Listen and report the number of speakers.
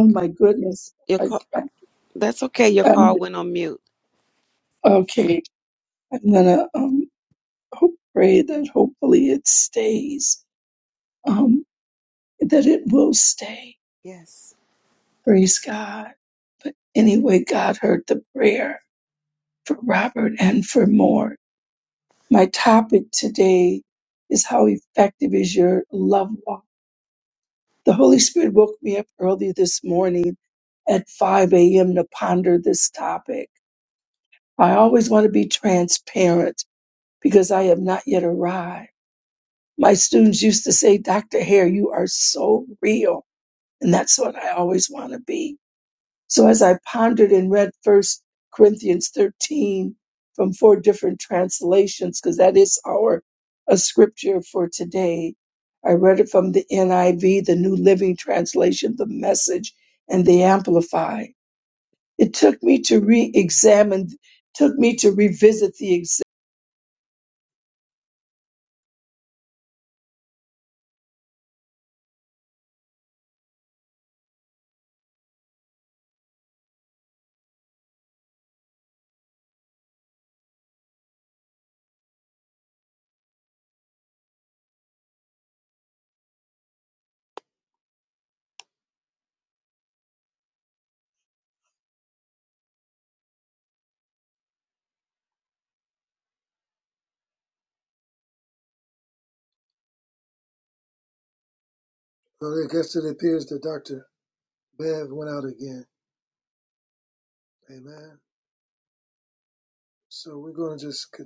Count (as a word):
three